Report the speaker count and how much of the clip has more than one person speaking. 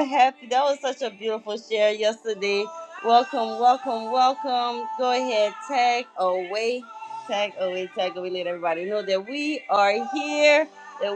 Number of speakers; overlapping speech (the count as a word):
one, no overlap